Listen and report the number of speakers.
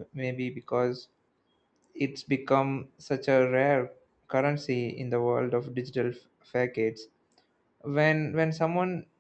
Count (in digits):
1